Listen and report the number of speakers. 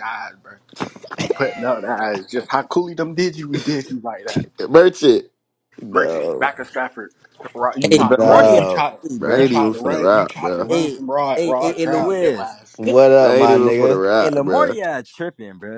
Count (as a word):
four